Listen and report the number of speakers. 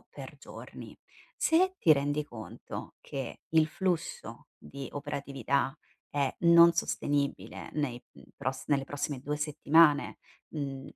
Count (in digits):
1